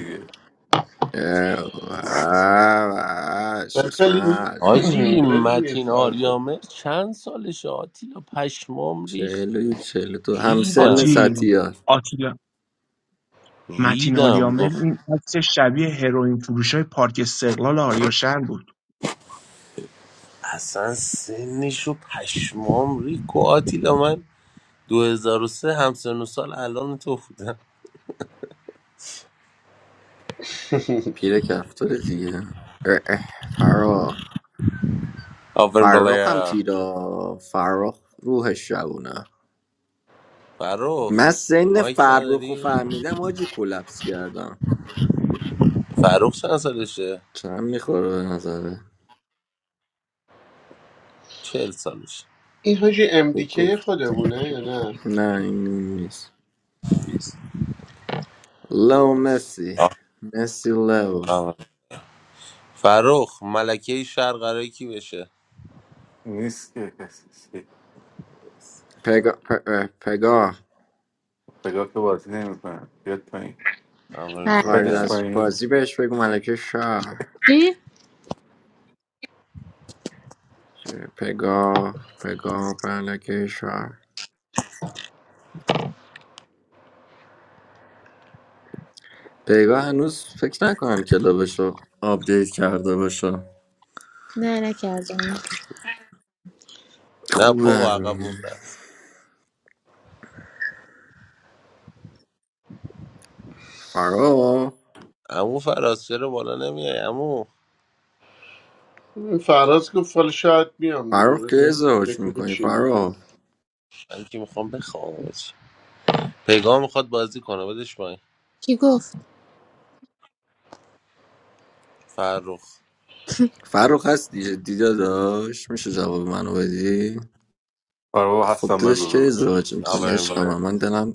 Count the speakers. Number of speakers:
6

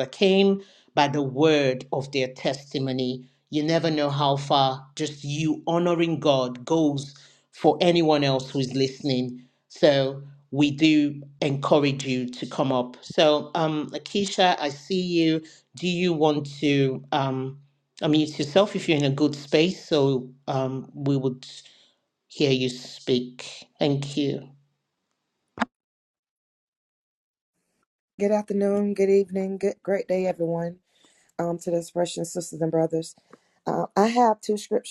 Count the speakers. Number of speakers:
2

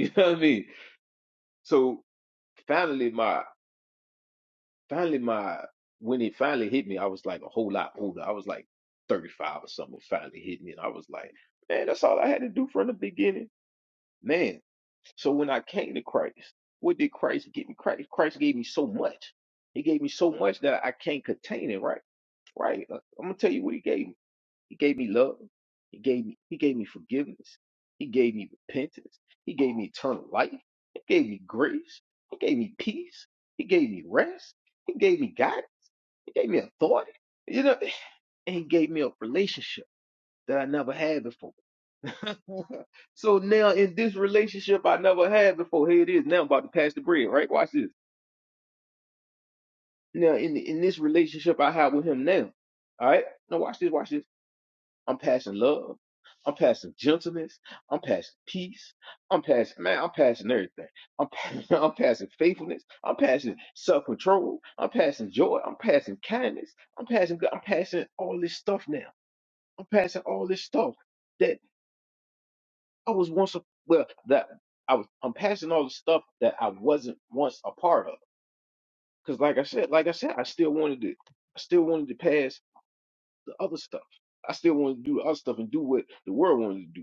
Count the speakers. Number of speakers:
1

